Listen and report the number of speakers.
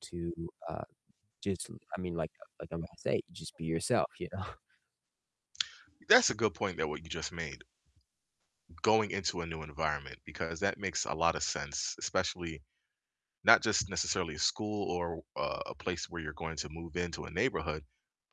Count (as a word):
two